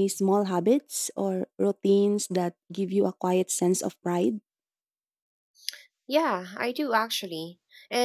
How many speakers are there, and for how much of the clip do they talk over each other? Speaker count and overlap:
2, no overlap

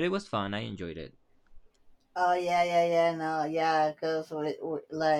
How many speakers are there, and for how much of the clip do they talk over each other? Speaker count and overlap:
2, no overlap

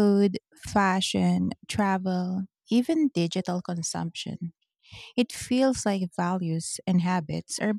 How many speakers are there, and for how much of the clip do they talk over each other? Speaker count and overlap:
1, no overlap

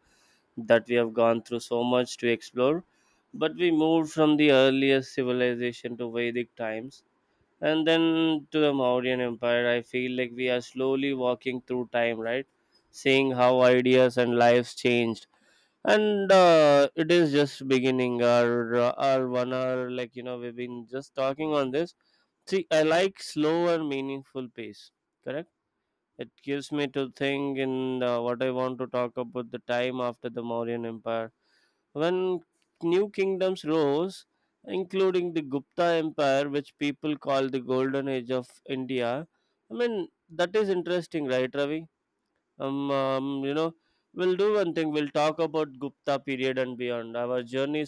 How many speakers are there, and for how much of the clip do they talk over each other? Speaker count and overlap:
1, no overlap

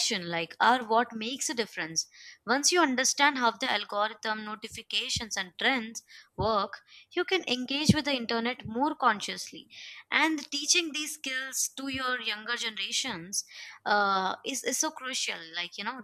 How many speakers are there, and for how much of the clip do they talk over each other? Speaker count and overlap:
1, no overlap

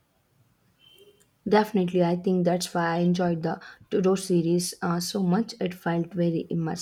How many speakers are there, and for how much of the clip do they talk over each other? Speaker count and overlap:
1, no overlap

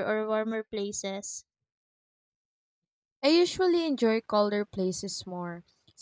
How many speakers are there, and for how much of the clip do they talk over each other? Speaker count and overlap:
2, no overlap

